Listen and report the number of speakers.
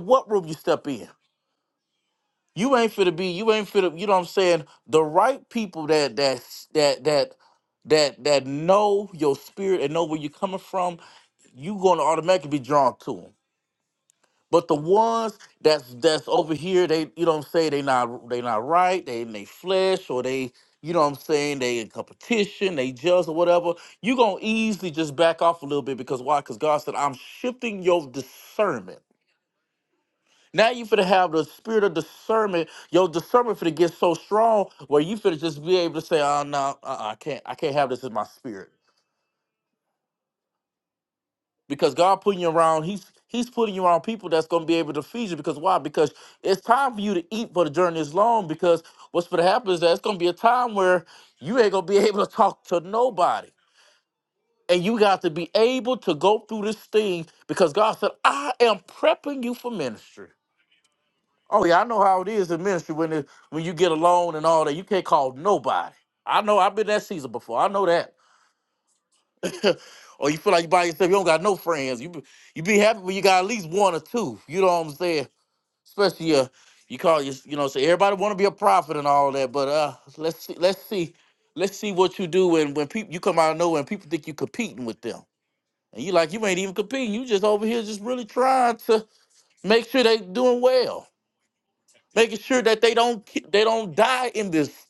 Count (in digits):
1